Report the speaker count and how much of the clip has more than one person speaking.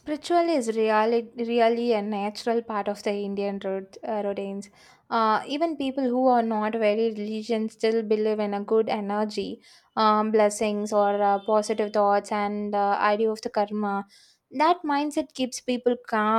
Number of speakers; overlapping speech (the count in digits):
1, no overlap